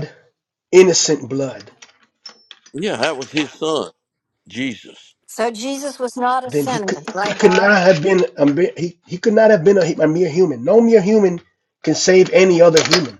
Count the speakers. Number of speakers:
3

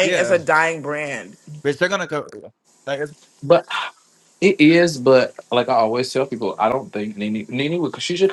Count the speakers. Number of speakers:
3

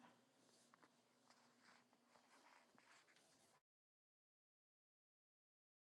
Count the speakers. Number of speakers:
0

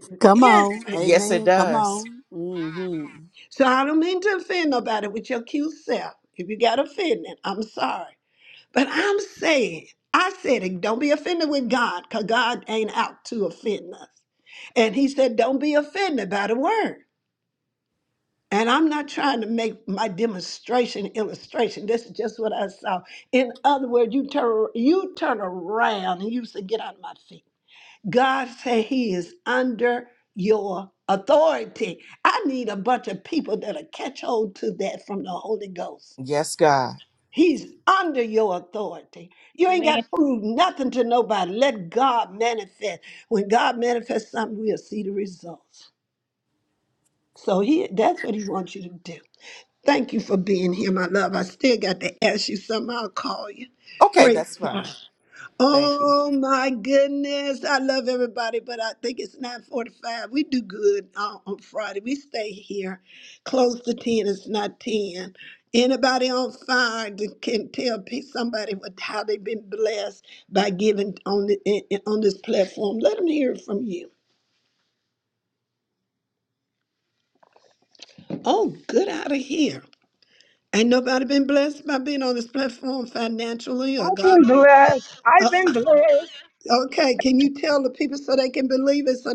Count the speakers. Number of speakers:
4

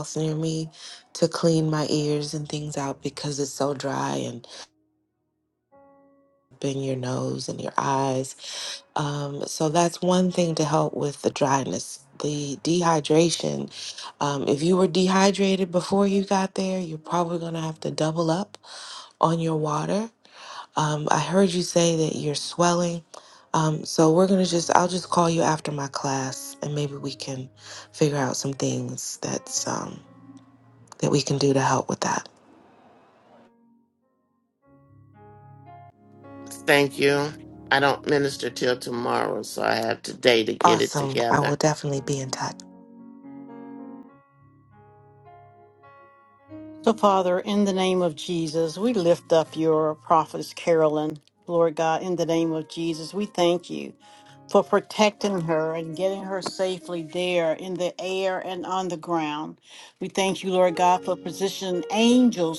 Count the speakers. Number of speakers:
3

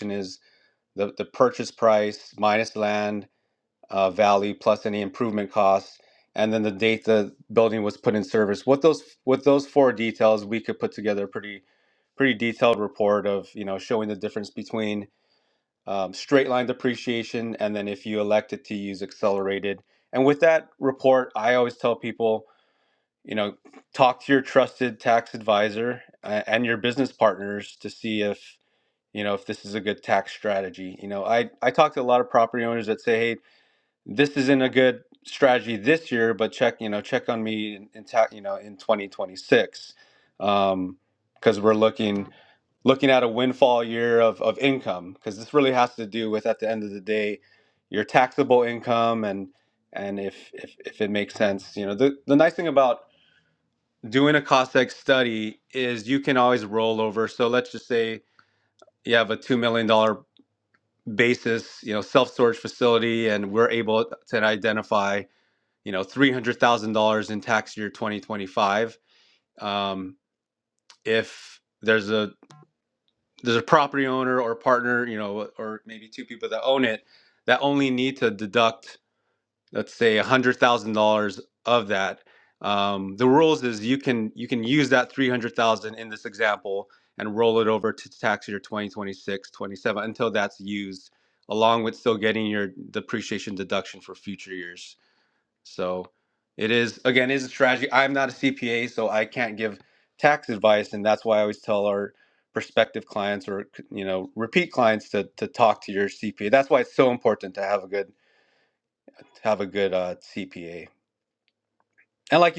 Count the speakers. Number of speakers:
1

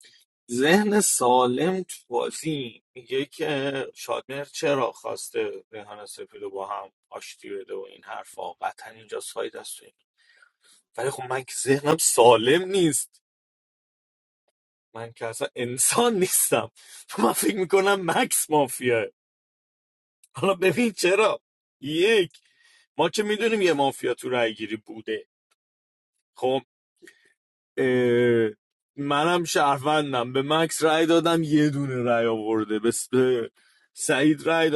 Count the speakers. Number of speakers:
1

